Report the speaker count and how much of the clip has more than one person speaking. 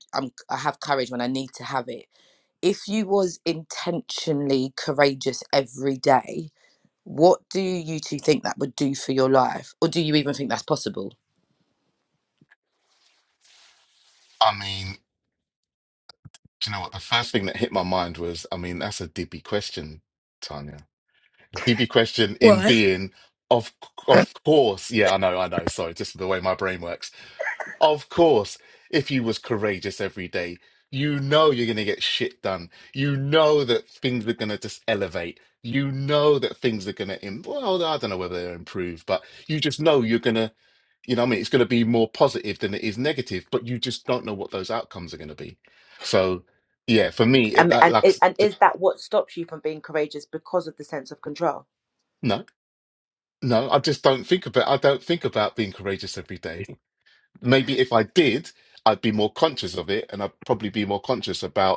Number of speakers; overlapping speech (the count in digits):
3, about 2%